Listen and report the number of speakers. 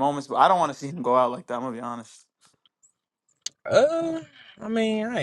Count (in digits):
2